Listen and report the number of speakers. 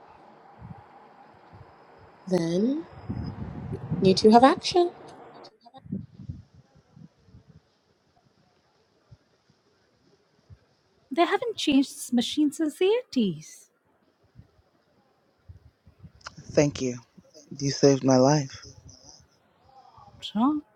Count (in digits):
3